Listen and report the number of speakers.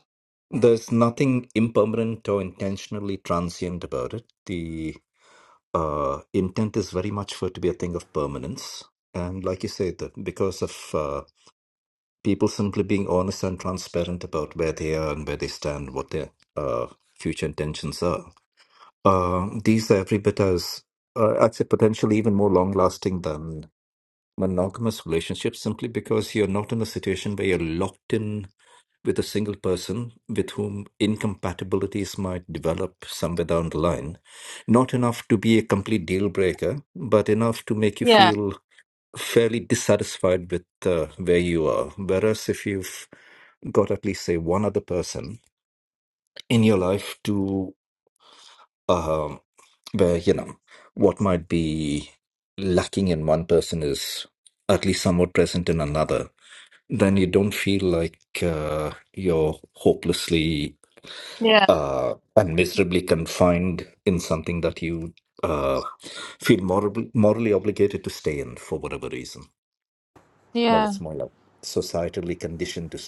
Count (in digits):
2